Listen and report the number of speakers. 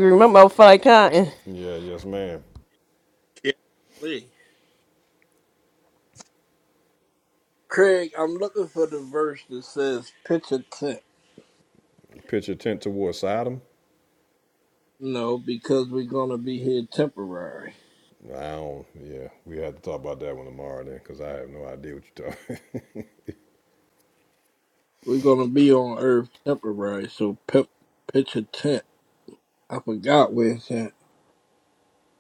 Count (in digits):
3